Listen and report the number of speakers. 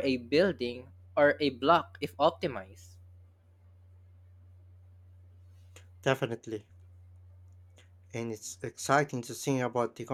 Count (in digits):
2